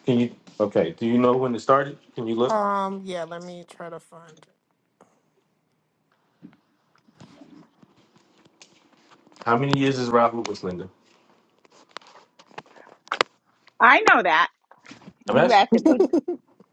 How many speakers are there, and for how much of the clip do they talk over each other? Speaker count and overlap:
3, about 3%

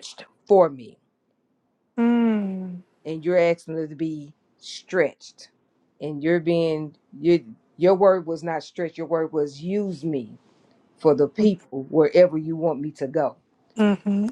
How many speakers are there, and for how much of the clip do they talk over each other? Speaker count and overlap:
2, no overlap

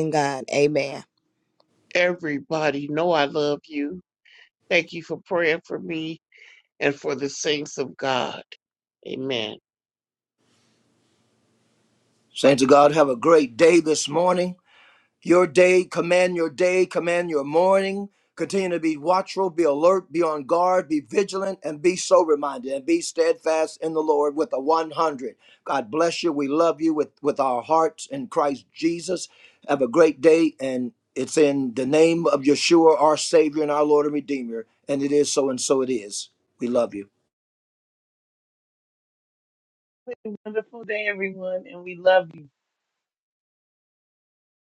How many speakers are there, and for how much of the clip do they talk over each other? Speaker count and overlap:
4, no overlap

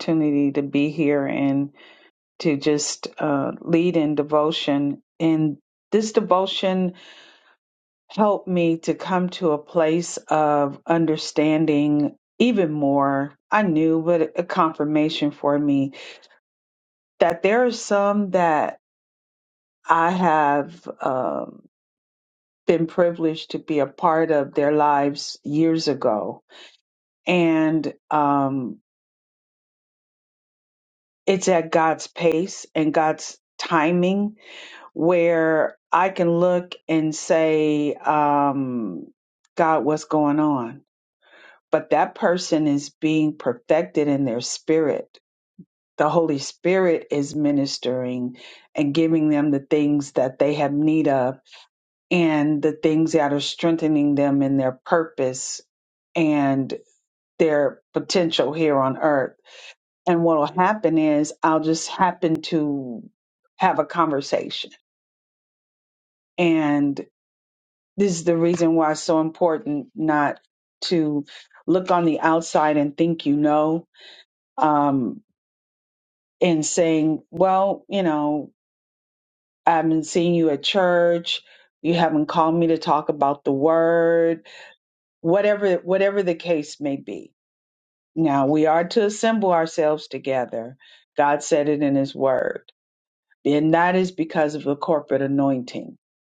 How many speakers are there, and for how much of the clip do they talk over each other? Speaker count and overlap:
1, no overlap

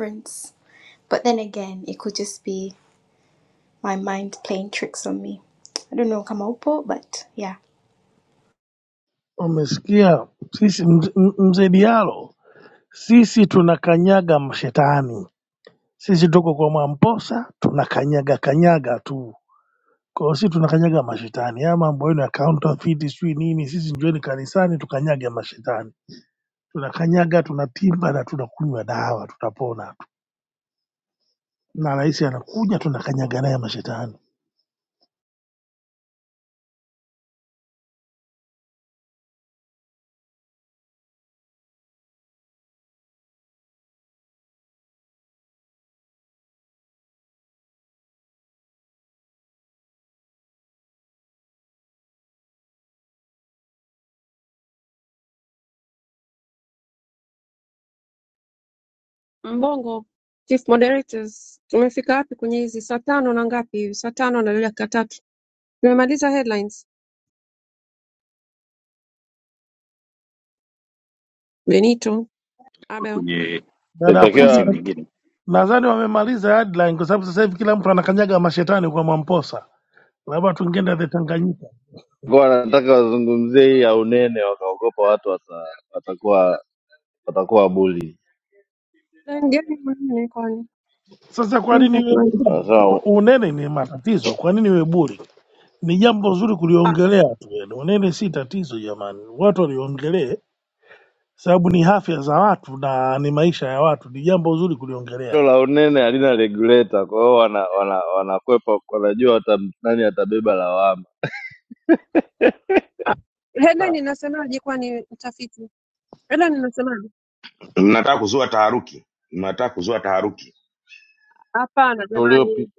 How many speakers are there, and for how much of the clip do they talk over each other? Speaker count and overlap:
5, about 2%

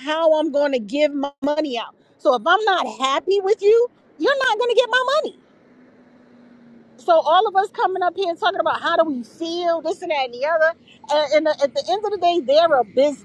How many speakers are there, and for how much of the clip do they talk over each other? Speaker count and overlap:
1, no overlap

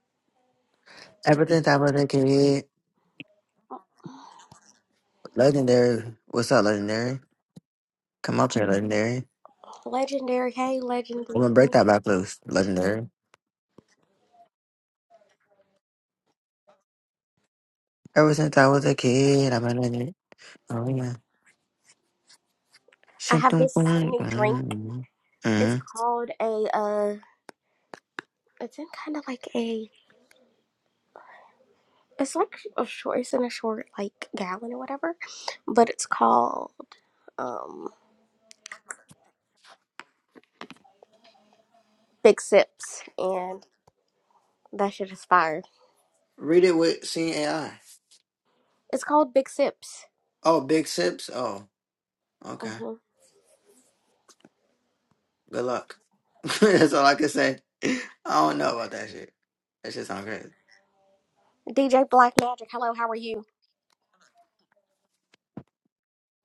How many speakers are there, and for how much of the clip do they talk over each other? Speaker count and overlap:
2, about 3%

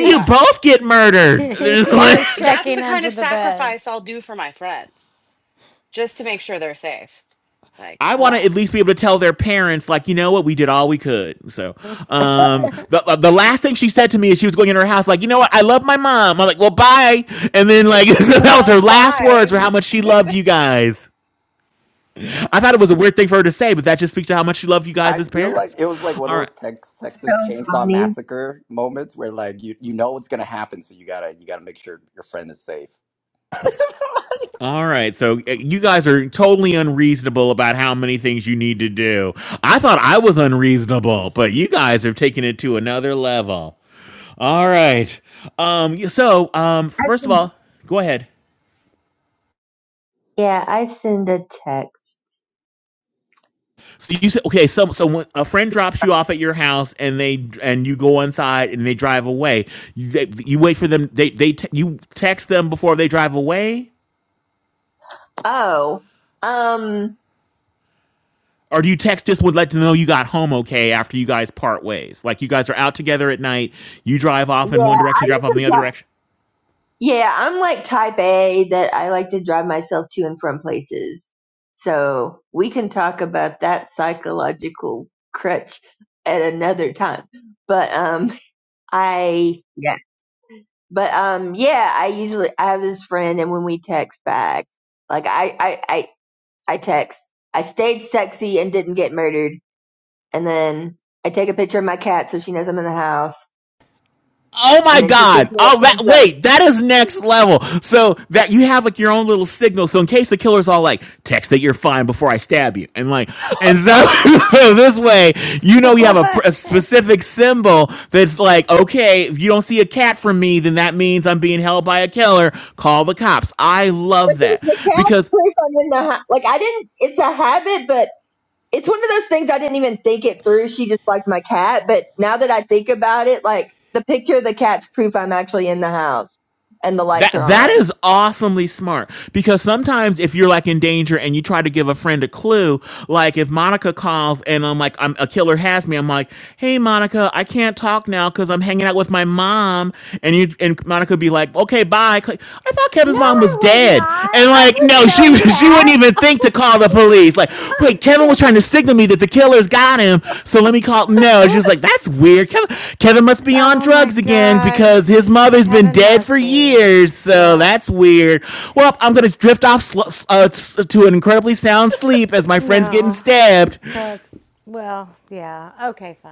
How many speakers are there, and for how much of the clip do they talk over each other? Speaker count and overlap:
5, about 11%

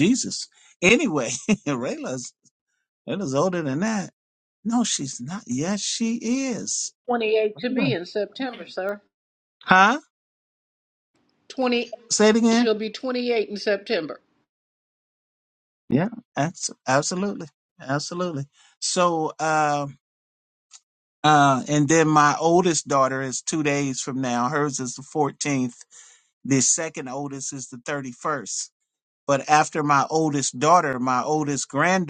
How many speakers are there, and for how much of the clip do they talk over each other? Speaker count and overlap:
2, about 2%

